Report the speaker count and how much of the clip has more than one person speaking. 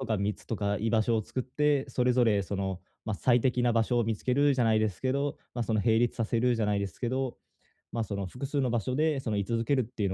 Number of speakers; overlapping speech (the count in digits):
1, no overlap